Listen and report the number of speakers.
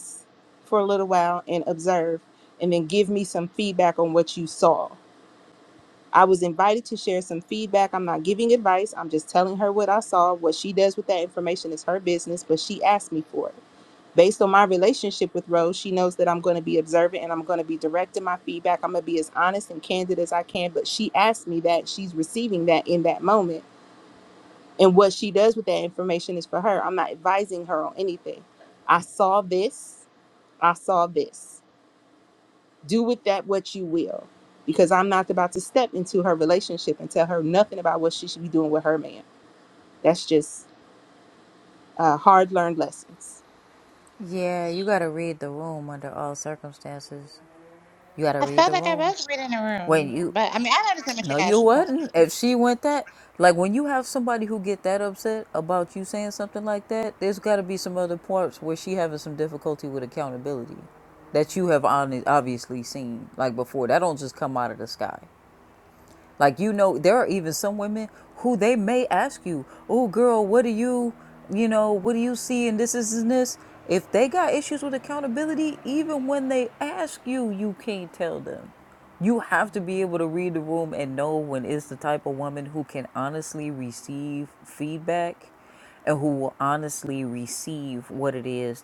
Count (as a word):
three